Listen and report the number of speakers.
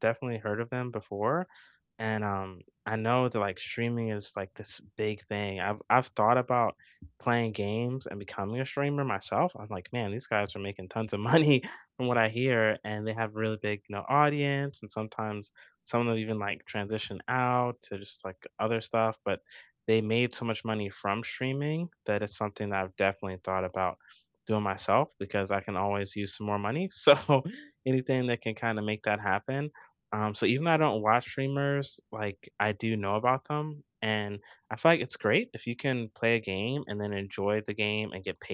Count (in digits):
1